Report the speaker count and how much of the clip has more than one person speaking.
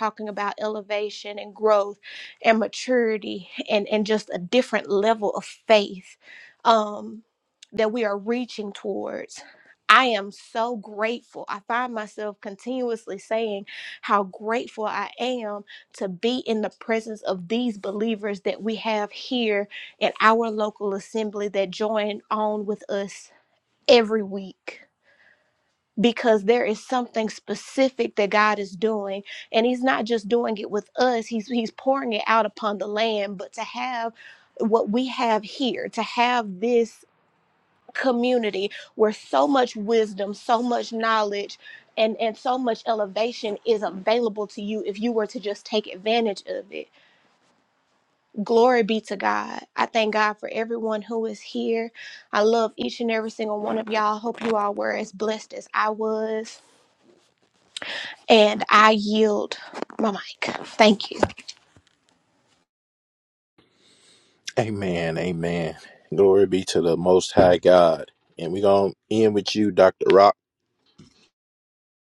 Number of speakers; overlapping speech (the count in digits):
2, no overlap